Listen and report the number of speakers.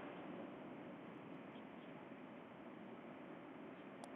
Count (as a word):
zero